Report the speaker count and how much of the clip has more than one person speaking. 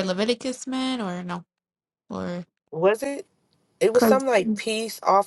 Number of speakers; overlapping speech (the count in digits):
2, about 5%